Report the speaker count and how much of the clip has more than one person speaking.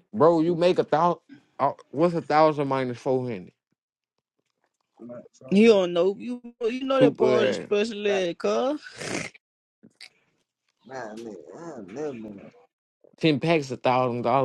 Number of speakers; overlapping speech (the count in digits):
3, about 8%